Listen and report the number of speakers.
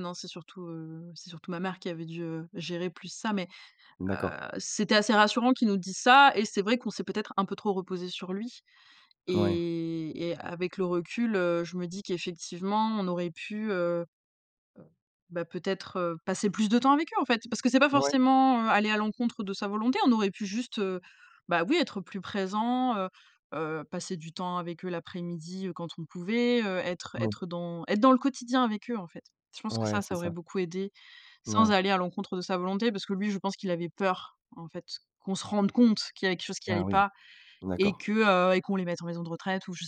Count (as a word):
two